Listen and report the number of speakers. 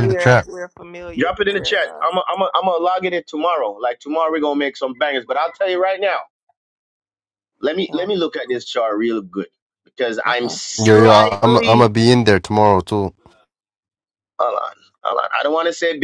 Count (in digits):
3